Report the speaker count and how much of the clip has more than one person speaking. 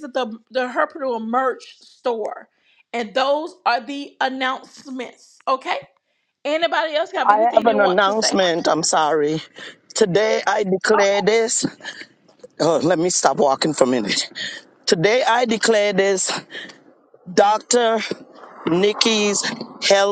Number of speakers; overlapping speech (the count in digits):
2, about 6%